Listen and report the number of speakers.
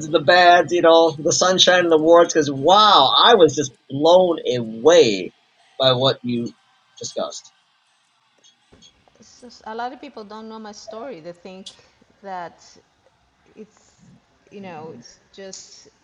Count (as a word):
two